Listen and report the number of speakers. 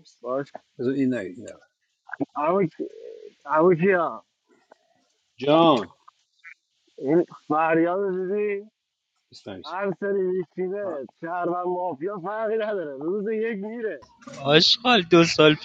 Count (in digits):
3